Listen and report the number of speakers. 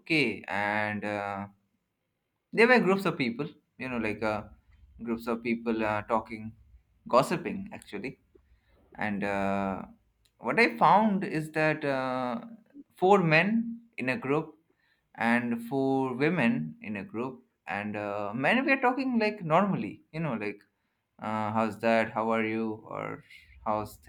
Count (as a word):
one